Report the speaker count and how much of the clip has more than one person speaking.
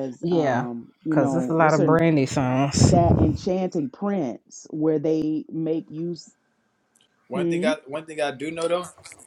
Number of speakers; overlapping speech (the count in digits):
3, about 20%